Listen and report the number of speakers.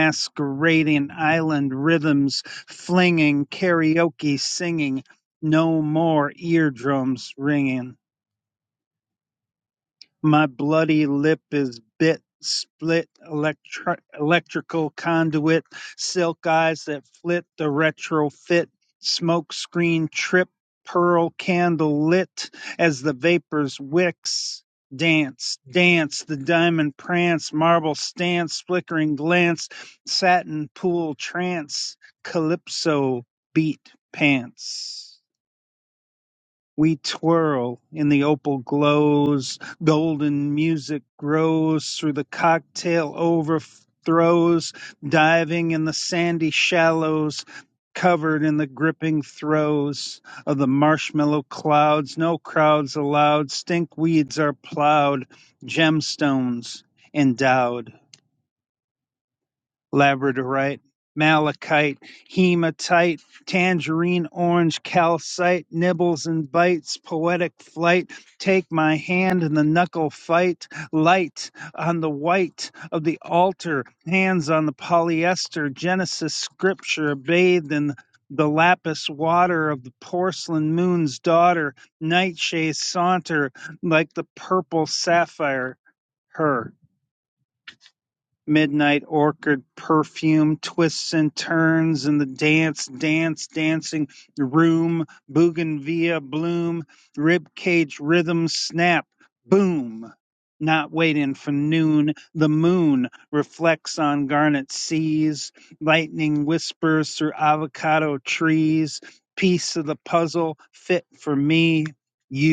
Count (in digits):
1